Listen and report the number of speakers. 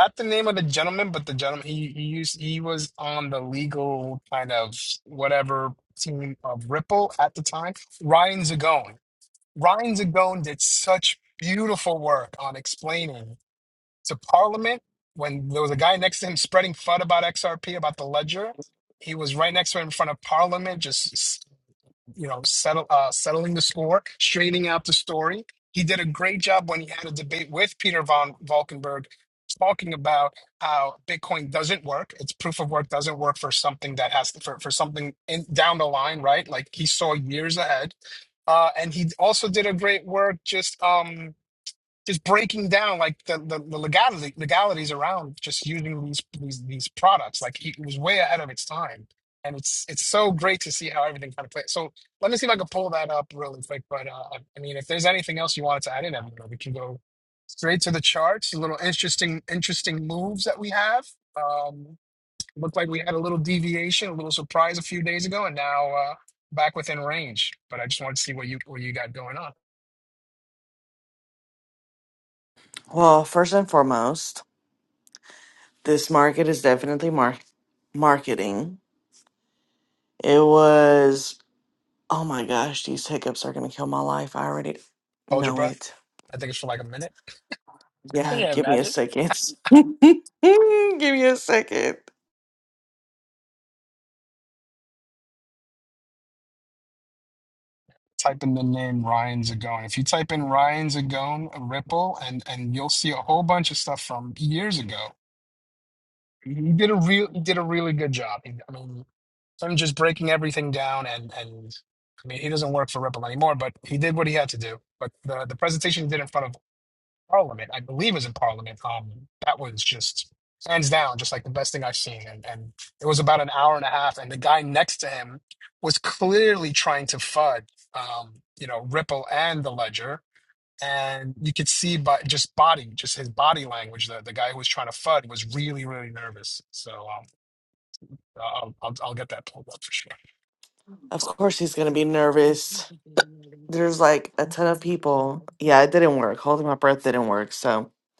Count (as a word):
two